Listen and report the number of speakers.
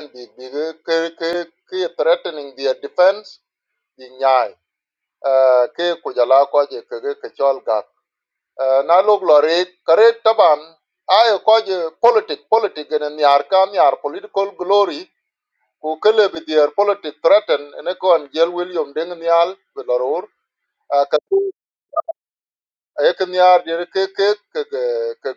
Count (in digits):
1